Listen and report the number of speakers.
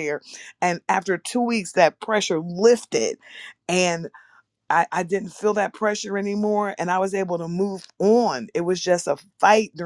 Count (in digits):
1